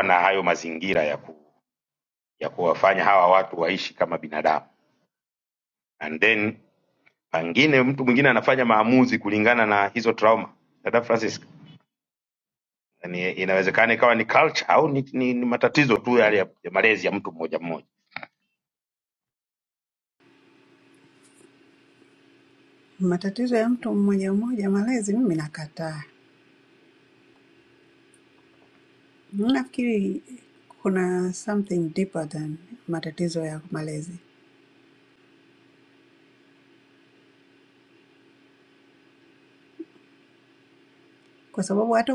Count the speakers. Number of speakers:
2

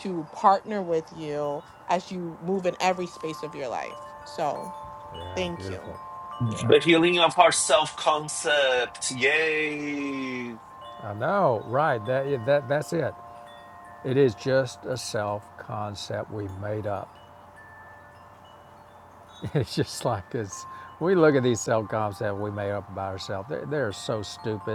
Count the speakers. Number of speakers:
3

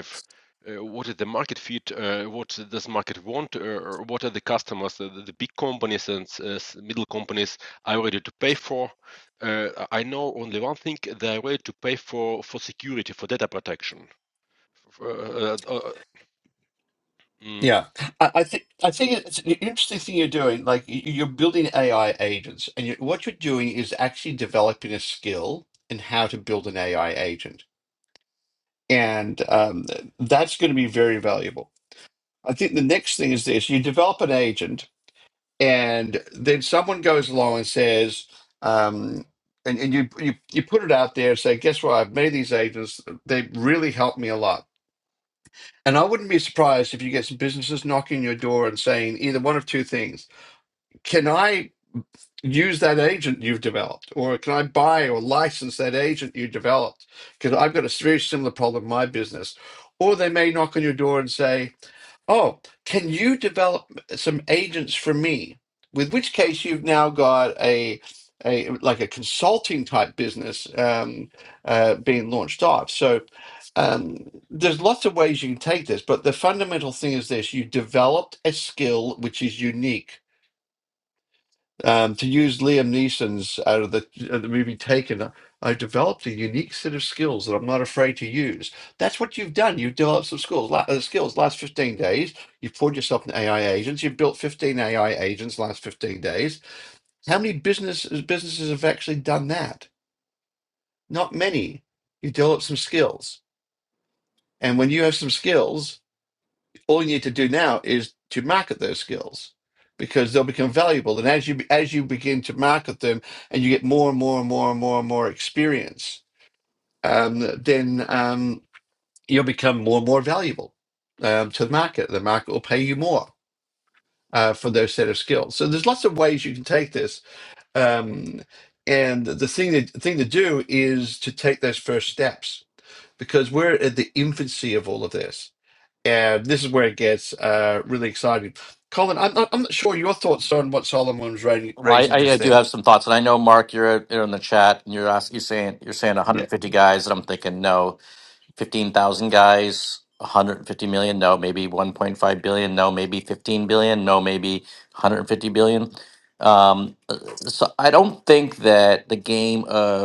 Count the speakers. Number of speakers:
3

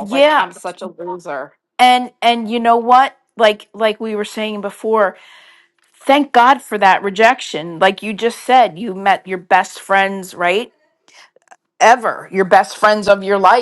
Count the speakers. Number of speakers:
2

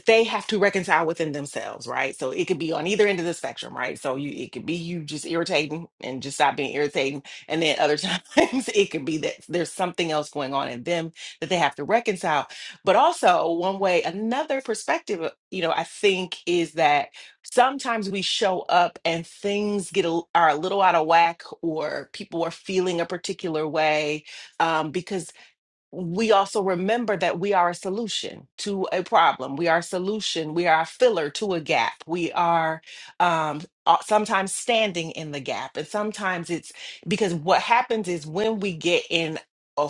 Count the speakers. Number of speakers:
1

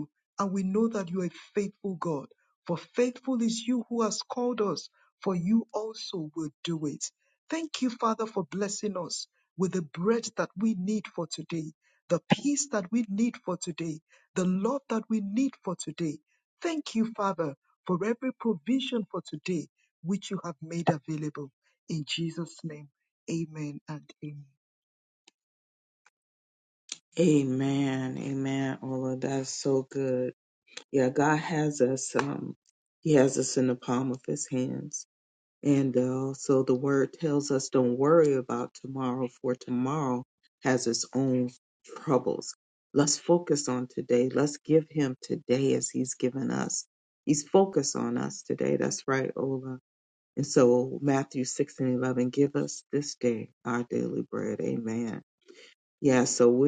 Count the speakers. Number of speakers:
2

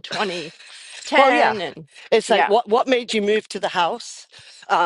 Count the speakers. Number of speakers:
2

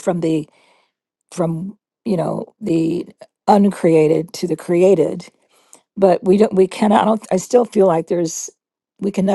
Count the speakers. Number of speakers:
1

